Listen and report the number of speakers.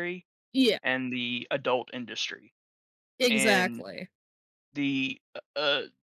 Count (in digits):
2